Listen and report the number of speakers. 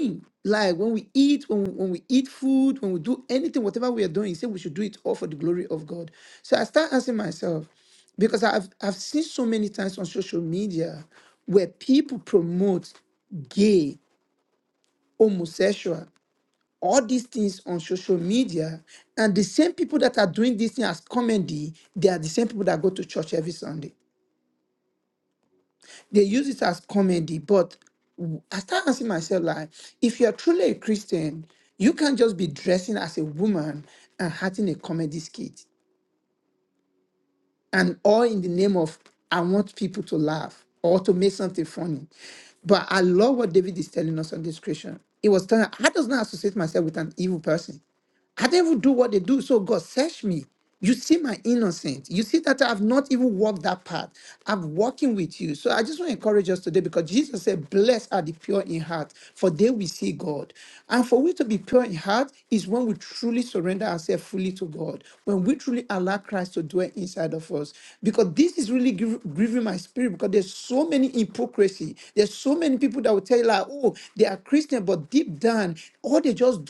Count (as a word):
one